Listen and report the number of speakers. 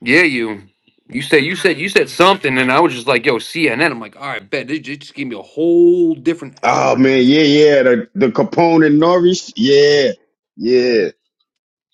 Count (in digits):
2